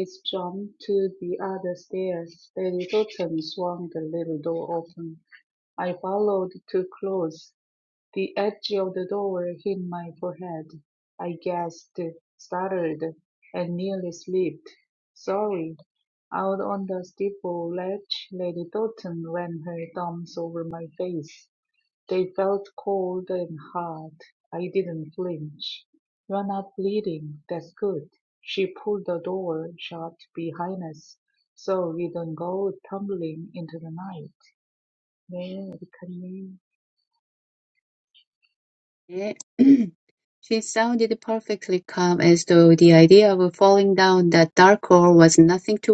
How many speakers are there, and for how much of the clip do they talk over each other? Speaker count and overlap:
2, no overlap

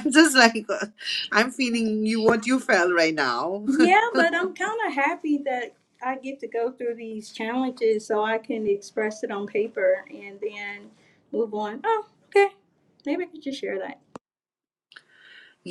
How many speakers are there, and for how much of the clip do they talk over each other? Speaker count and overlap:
2, no overlap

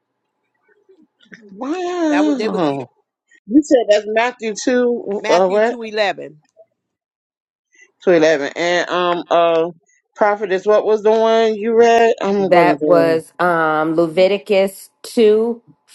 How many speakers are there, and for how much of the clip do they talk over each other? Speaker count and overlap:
3, about 11%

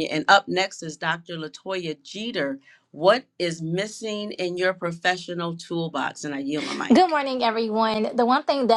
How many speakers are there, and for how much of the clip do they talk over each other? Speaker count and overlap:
2, about 3%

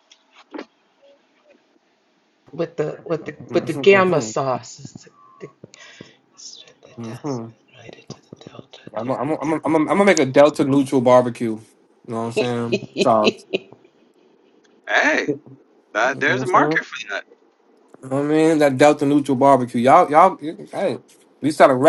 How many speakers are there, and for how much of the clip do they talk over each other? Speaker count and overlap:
3, about 4%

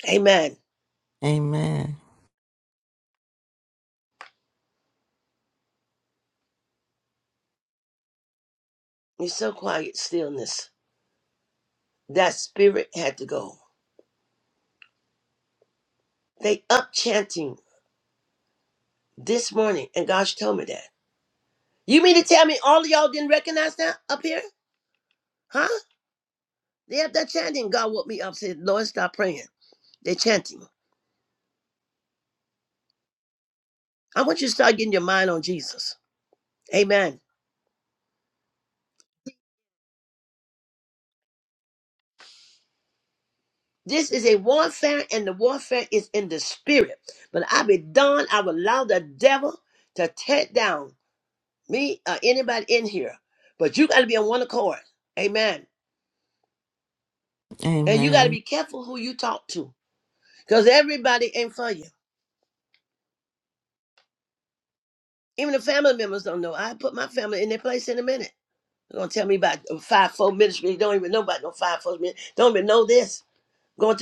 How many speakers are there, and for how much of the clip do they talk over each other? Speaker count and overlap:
2, under 1%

